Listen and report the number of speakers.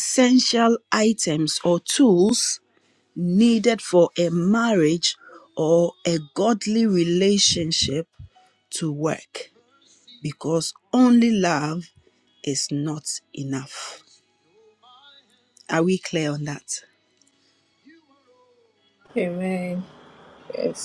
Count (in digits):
2